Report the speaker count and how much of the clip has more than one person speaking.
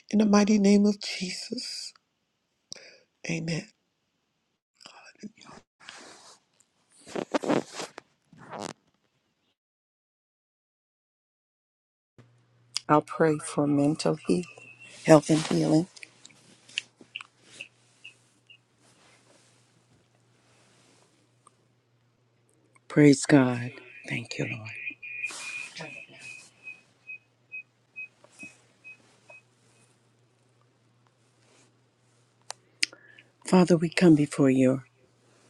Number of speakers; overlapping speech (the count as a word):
two, no overlap